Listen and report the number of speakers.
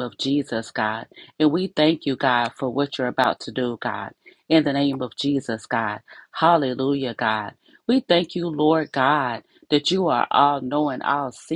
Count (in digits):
1